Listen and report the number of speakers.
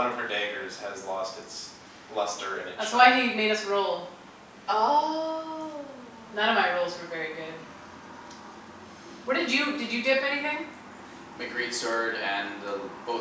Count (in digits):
4